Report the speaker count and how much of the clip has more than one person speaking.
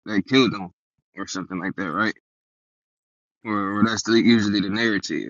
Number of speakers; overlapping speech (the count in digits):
1, no overlap